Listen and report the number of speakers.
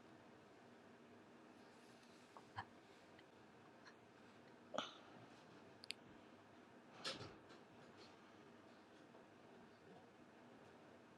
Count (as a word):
zero